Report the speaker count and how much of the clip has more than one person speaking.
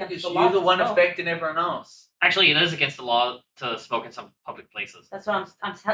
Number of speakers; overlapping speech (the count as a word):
three, about 18%